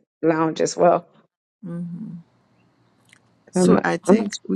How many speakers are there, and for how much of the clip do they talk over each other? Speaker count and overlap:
2, about 16%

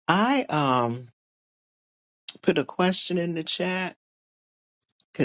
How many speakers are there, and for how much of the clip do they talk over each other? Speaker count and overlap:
1, no overlap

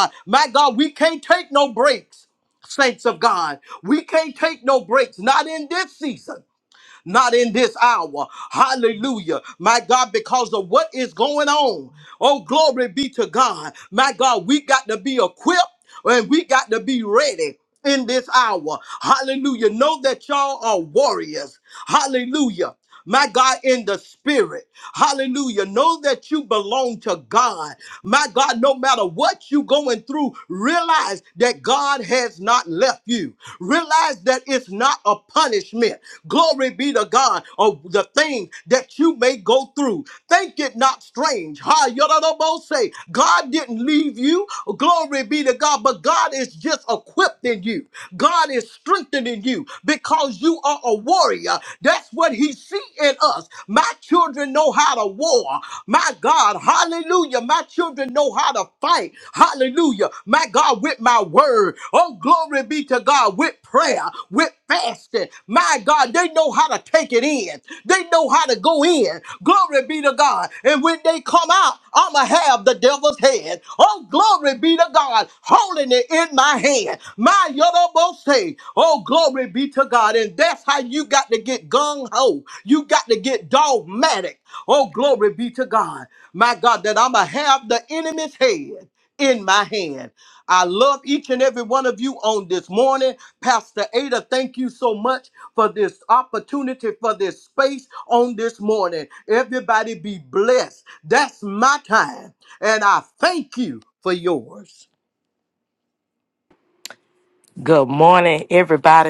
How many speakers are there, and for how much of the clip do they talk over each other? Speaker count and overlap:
2, no overlap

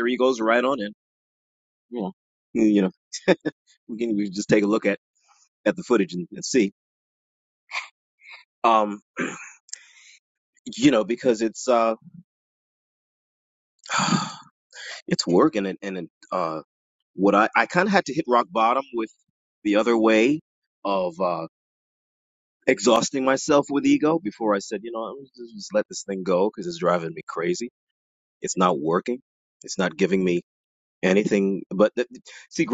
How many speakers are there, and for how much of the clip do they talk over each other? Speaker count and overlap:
1, no overlap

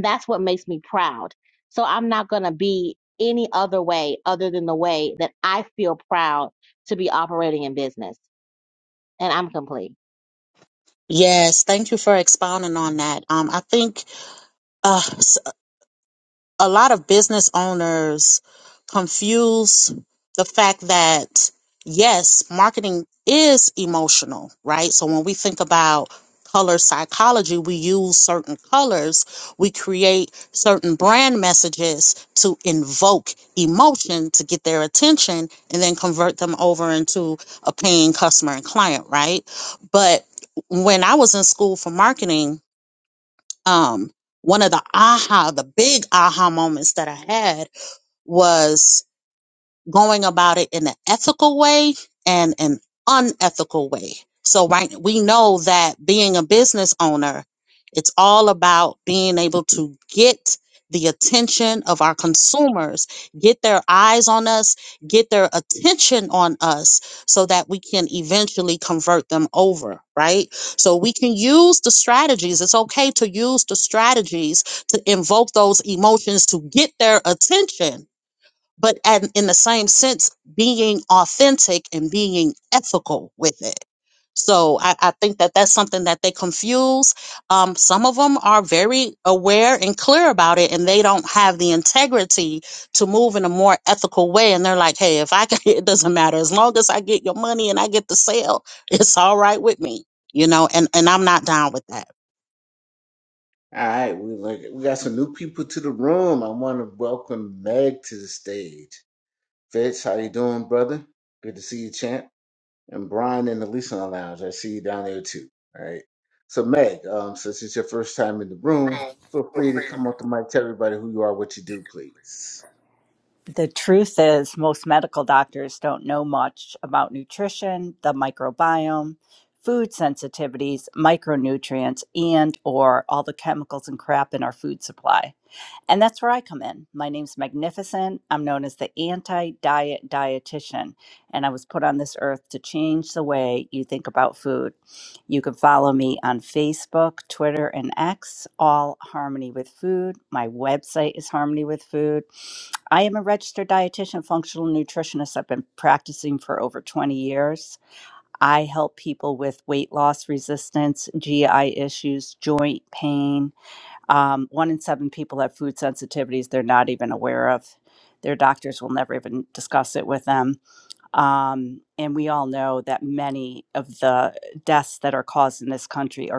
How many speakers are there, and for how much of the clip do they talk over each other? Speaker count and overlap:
4, no overlap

